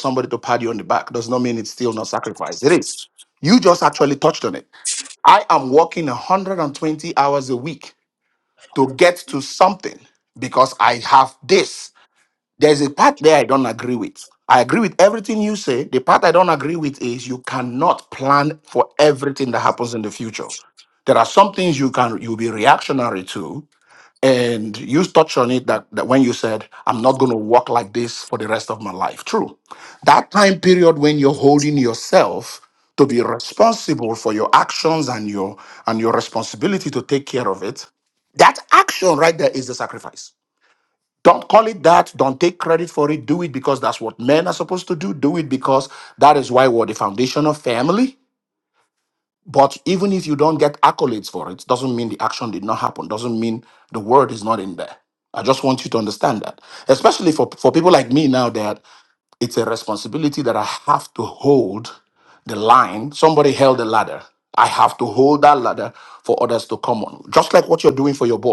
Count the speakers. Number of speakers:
one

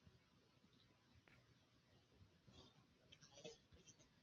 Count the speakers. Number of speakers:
zero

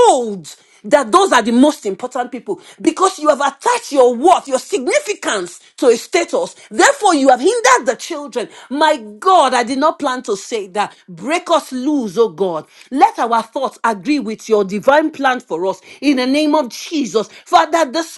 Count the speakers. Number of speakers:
one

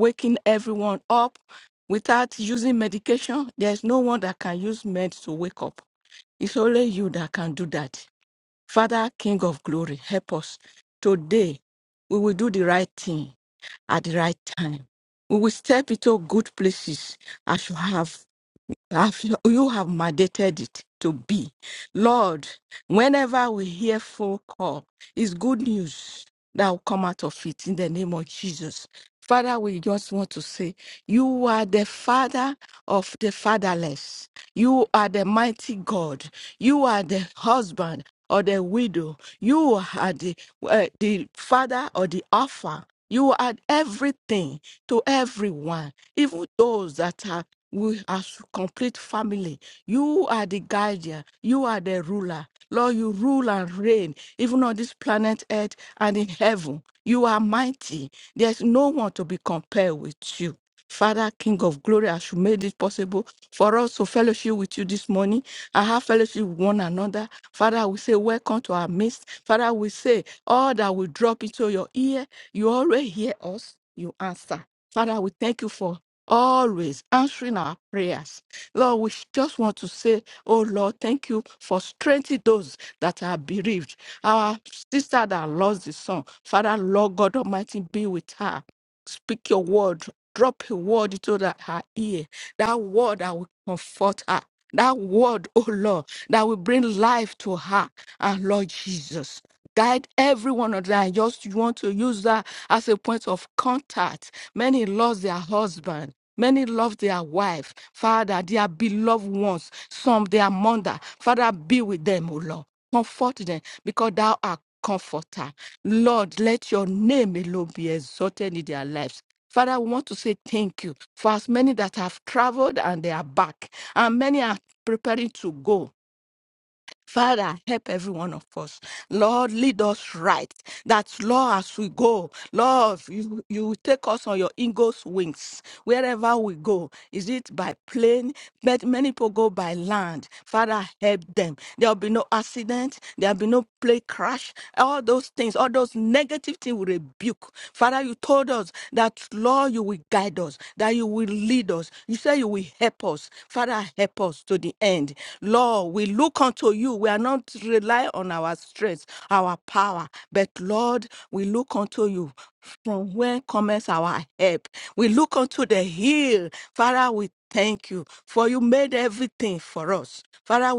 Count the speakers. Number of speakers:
one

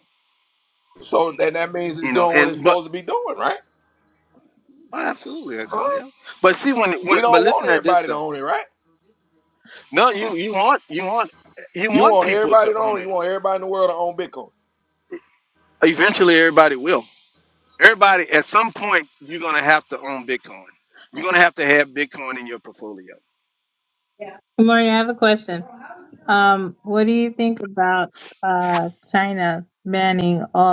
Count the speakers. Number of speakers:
three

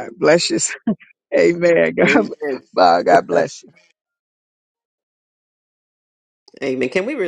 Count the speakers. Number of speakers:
two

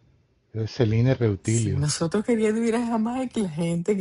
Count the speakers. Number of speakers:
two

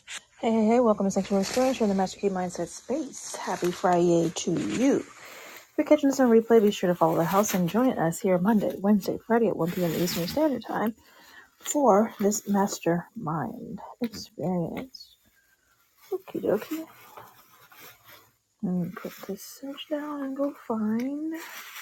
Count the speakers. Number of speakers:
one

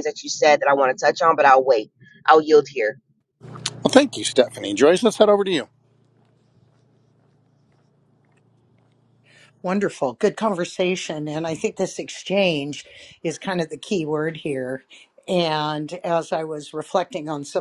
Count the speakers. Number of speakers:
three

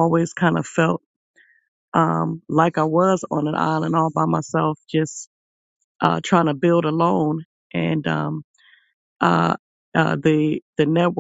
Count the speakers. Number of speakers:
one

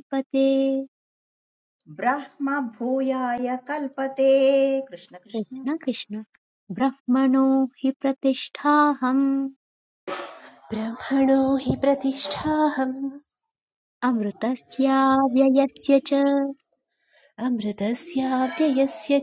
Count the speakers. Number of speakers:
three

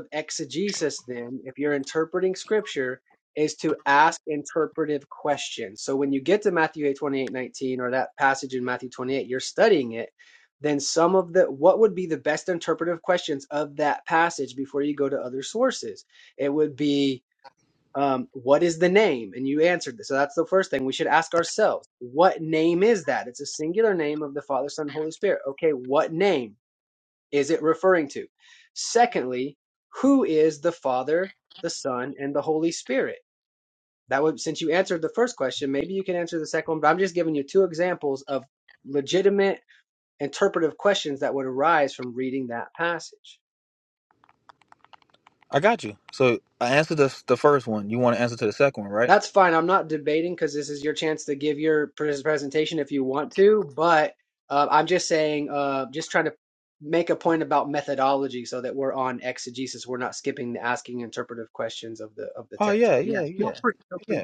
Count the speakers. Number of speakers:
two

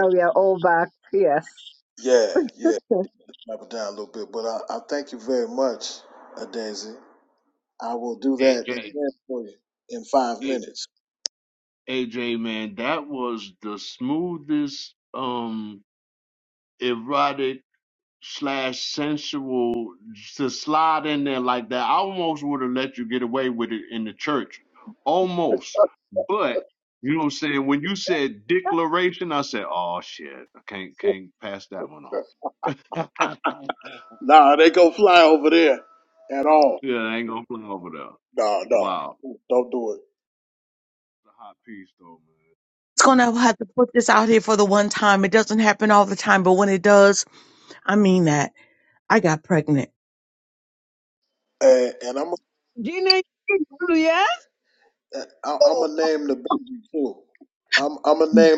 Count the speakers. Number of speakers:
four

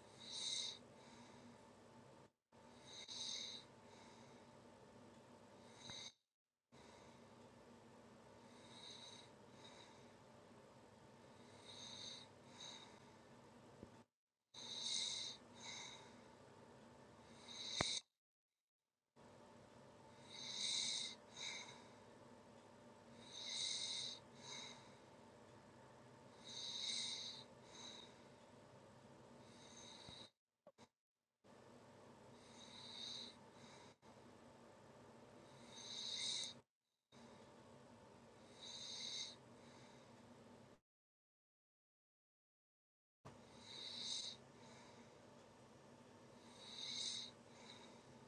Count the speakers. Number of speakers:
zero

